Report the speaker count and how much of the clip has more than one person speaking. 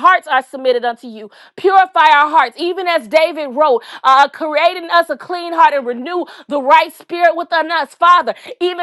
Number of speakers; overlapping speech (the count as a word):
one, no overlap